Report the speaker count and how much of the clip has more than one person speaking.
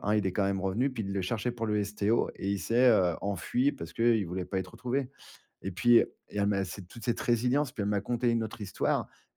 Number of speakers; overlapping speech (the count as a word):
one, no overlap